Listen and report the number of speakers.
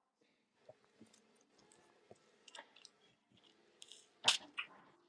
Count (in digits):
0